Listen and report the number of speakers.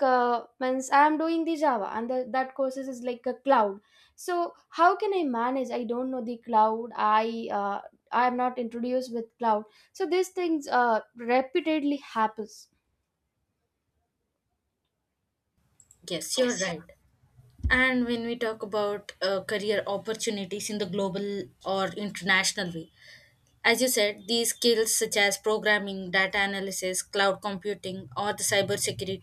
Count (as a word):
two